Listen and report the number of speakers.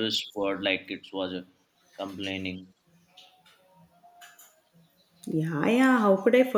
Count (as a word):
two